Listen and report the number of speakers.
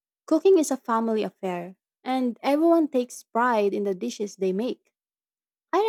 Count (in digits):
1